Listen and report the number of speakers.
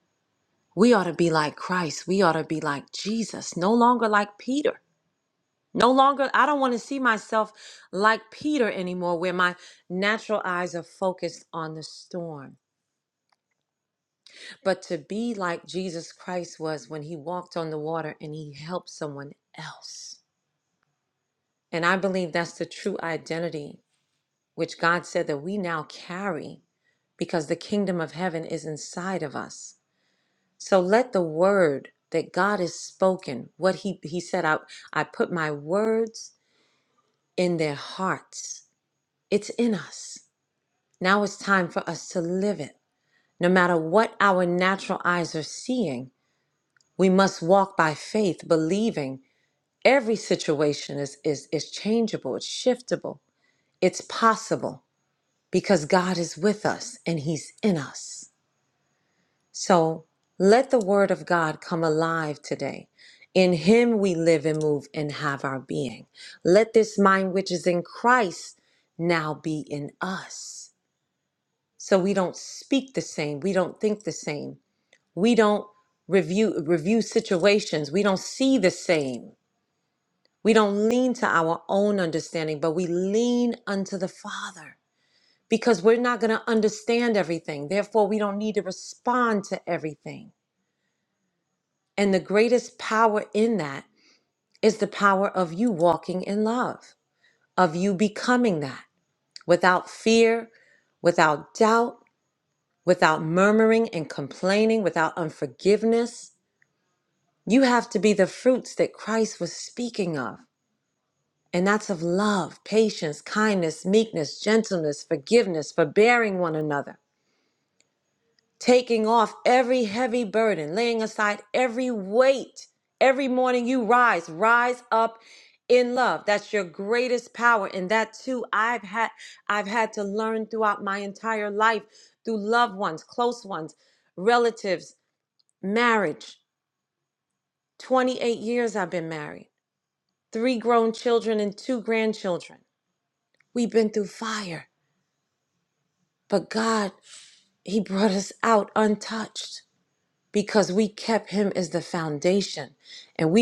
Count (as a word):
one